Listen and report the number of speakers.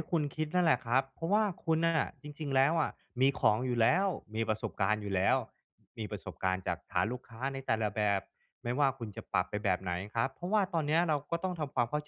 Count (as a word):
one